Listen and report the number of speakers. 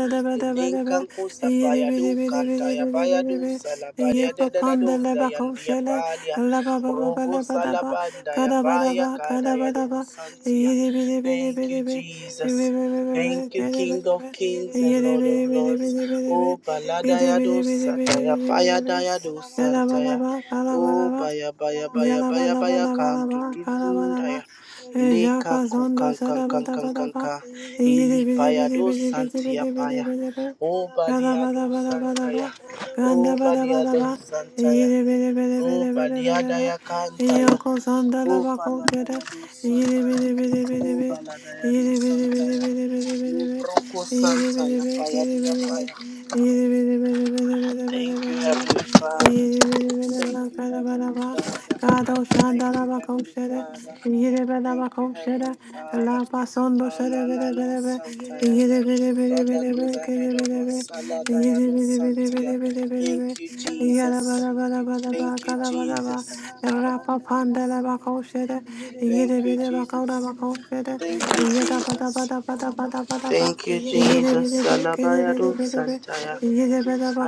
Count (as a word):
two